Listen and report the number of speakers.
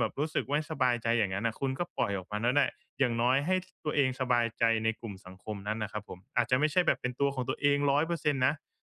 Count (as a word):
one